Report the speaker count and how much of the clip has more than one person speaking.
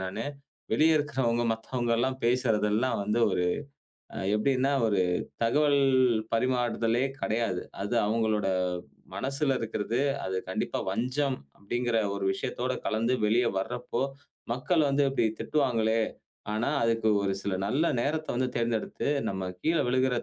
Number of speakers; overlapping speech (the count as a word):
one, no overlap